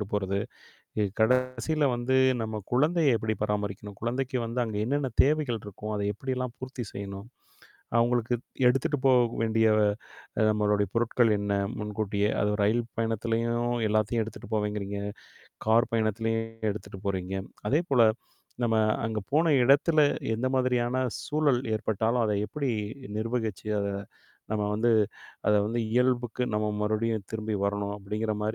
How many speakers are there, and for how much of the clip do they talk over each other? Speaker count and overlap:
1, no overlap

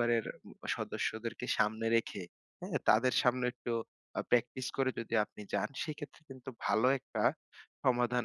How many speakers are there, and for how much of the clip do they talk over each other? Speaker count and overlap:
1, no overlap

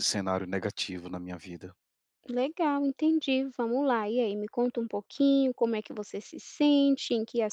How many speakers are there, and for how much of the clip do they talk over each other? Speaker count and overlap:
2, no overlap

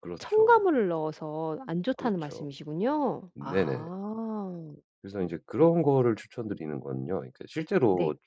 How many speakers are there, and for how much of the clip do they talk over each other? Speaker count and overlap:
2, about 21%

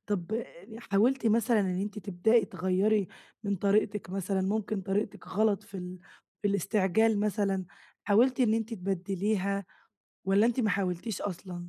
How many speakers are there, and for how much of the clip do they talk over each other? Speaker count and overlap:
1, no overlap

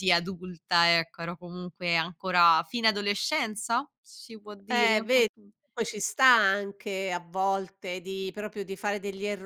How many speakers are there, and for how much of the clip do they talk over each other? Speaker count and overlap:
2, about 6%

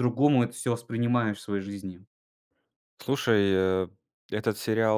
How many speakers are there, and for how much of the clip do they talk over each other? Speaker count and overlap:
2, no overlap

